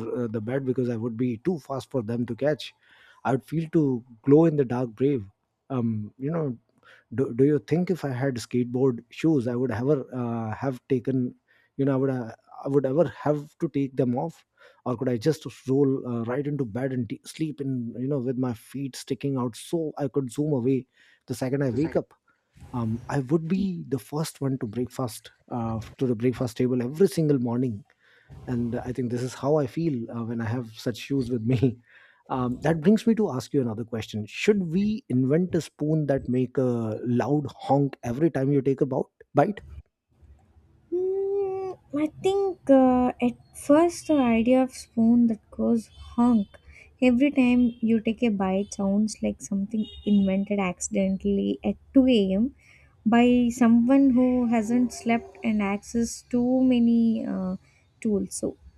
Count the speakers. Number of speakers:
2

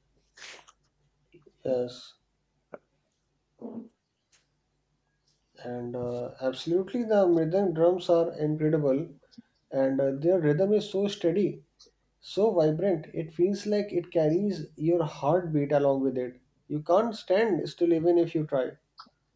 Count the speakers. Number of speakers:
1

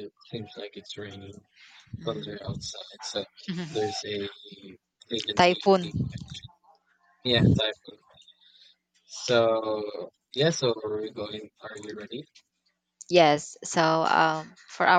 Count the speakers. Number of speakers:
2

